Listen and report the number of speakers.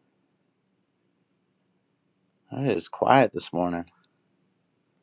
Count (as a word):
one